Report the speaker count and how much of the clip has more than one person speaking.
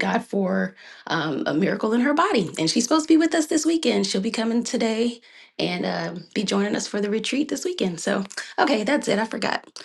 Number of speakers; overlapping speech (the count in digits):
1, no overlap